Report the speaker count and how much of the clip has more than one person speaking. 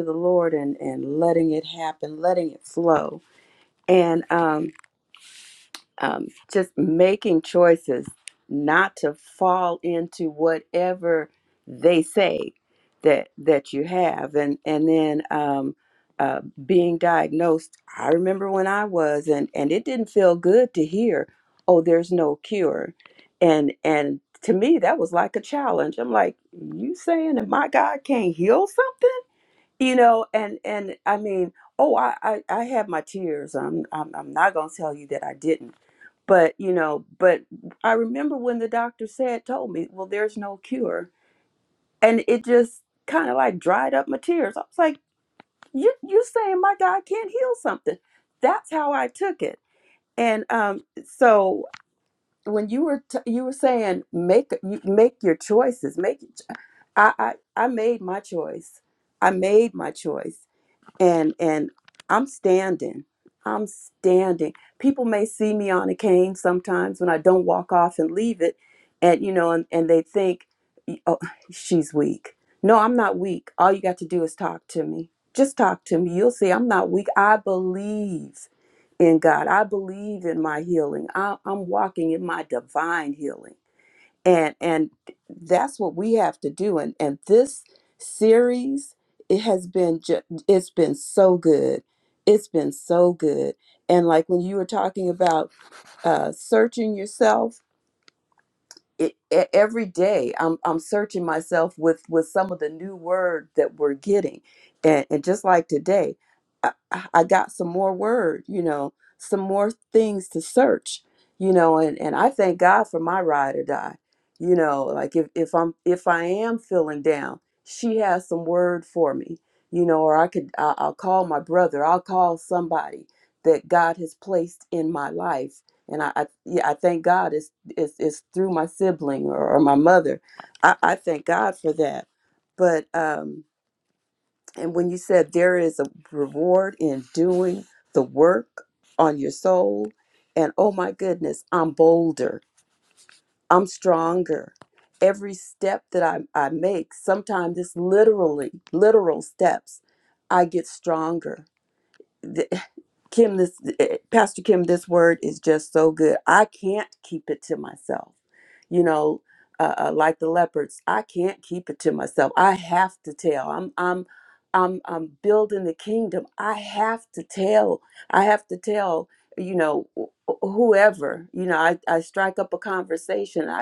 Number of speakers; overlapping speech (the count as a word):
one, no overlap